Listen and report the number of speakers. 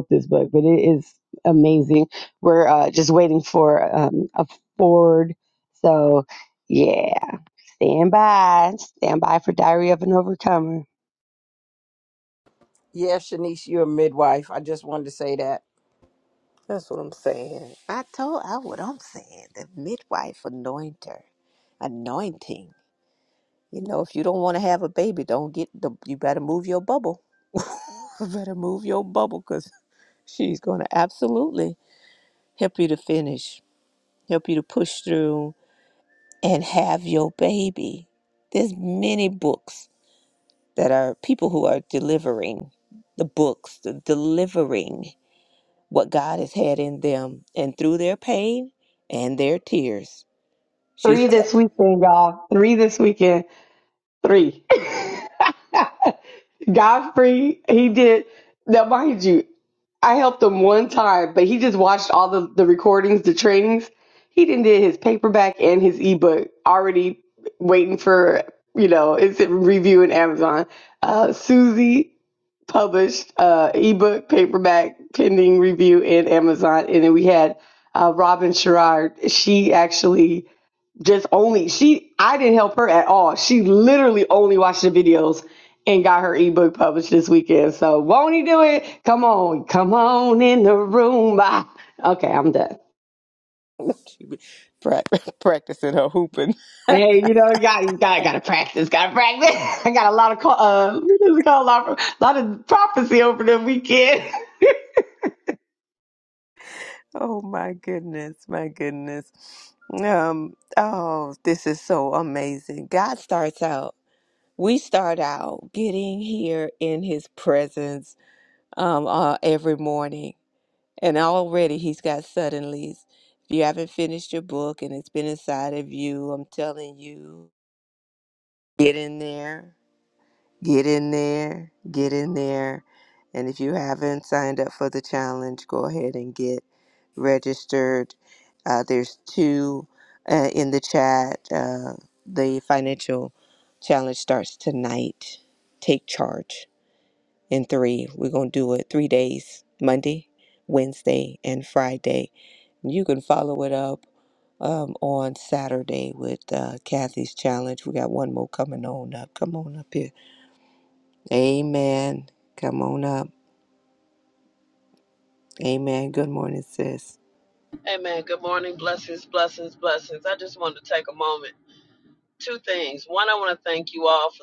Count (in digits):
4